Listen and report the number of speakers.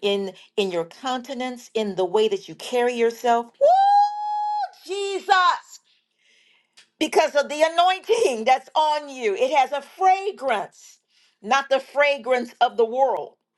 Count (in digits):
1